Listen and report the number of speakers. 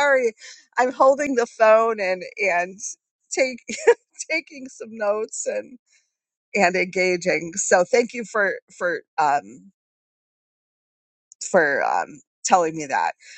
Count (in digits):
1